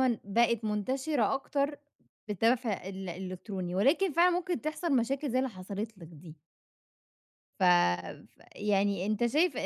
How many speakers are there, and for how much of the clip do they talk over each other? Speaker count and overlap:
1, no overlap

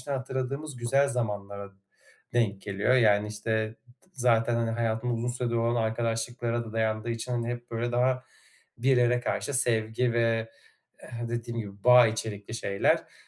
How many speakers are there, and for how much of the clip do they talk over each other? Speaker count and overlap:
1, no overlap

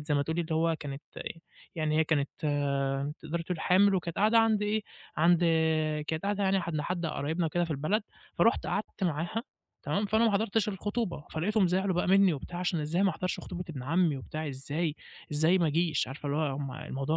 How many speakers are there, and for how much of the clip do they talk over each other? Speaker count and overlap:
1, no overlap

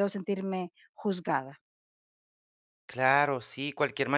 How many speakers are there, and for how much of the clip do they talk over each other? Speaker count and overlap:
2, no overlap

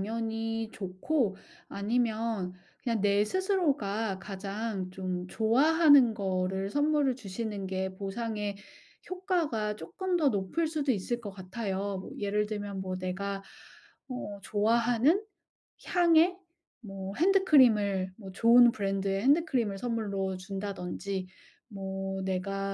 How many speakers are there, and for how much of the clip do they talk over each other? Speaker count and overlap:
1, no overlap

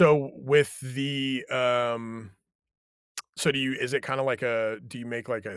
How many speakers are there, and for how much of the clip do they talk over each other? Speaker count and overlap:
1, no overlap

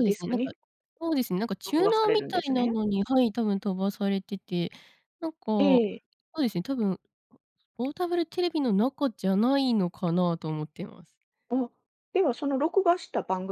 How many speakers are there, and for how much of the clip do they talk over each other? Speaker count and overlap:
2, about 14%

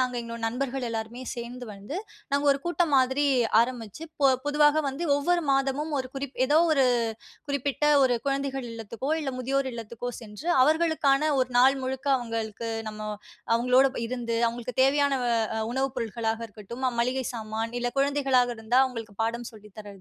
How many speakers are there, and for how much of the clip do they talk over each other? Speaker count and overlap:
1, no overlap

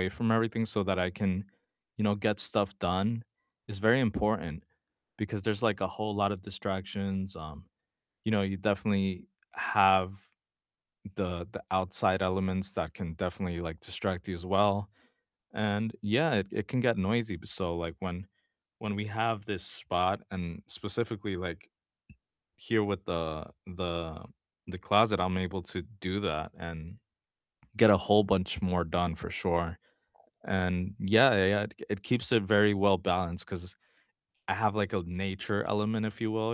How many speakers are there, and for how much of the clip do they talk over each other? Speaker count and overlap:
1, no overlap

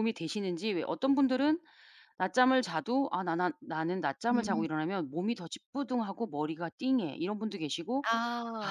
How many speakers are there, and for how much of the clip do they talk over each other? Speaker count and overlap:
2, about 5%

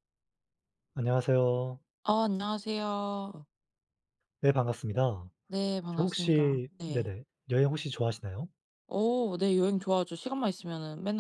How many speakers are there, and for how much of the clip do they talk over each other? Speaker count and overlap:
2, about 9%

